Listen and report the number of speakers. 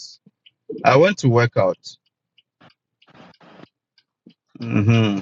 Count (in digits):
1